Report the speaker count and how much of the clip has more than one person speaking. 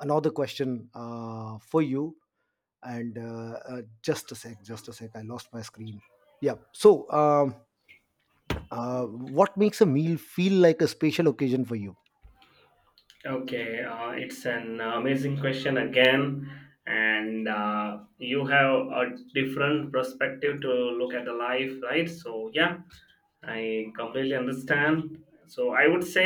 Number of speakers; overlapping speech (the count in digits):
2, no overlap